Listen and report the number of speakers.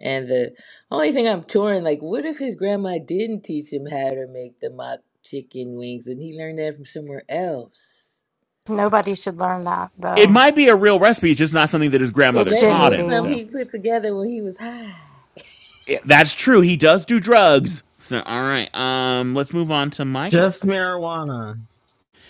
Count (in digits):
4